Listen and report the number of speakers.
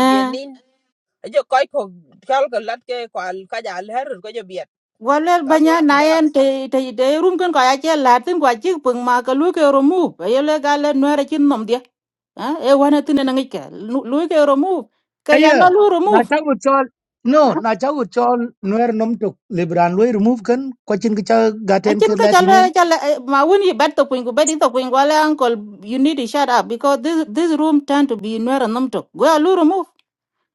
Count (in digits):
3